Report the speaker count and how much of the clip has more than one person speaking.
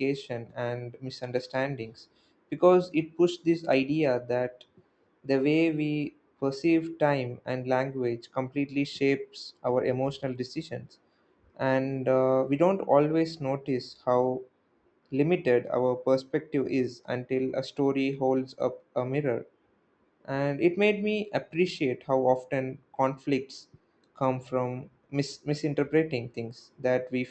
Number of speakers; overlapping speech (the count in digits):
1, no overlap